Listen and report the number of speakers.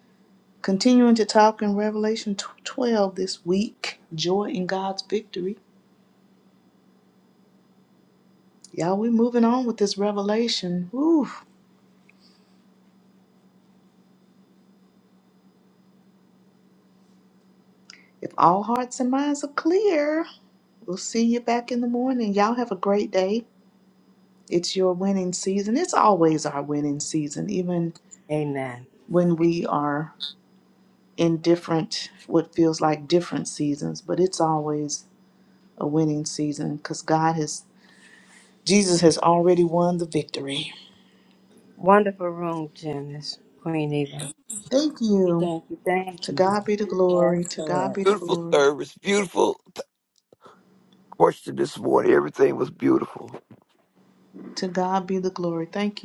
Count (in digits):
3